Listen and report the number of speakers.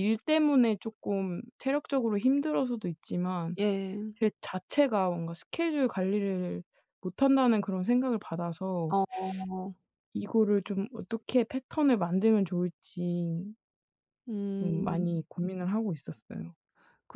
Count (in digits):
2